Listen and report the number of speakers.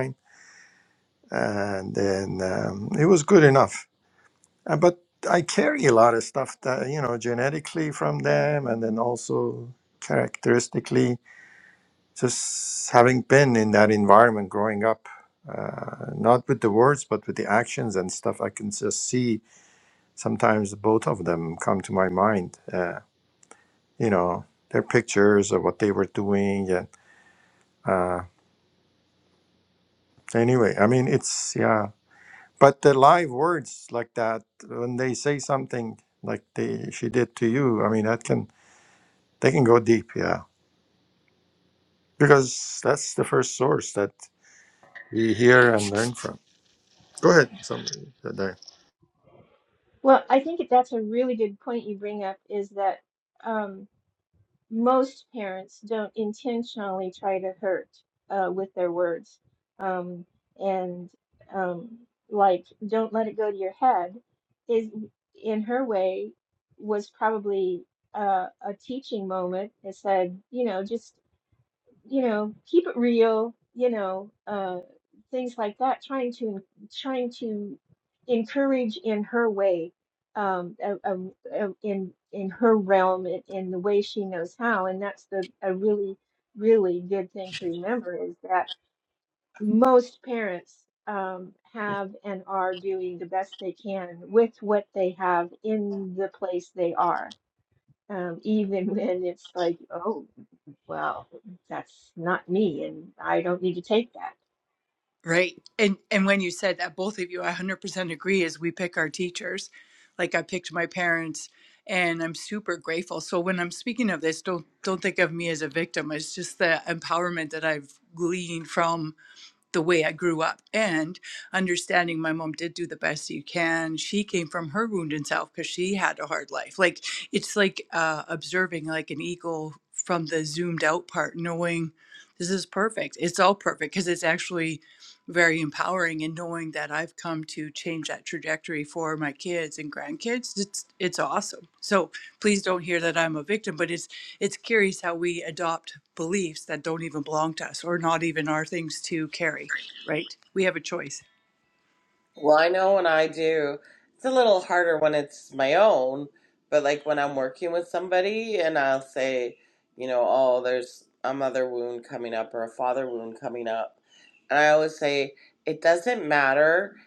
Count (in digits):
4